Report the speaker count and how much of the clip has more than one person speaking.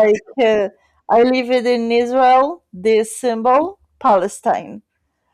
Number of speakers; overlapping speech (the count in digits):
1, no overlap